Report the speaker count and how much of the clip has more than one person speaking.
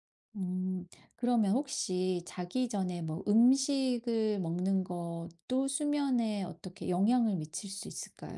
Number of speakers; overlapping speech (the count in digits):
1, no overlap